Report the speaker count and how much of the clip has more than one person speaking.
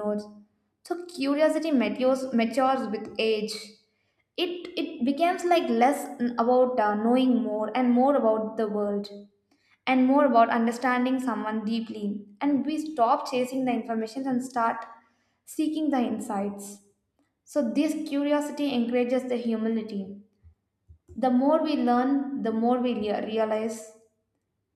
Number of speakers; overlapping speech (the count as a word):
one, no overlap